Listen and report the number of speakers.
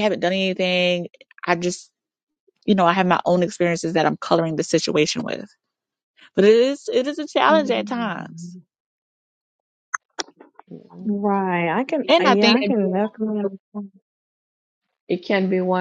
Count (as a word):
three